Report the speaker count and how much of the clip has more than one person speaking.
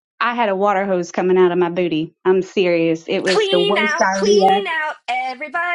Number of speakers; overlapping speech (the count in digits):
2, about 24%